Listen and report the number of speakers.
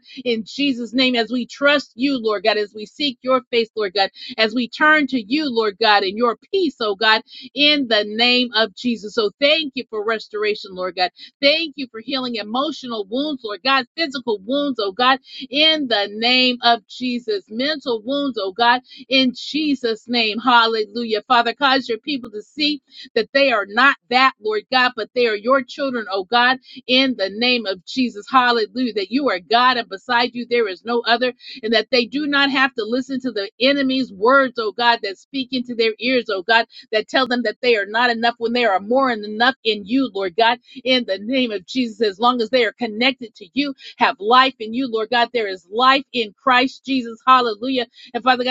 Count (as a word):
one